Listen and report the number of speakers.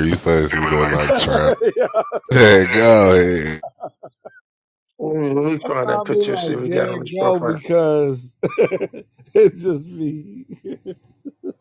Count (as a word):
three